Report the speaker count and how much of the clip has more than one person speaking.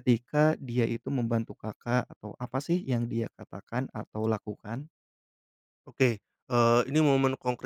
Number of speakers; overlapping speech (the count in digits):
2, no overlap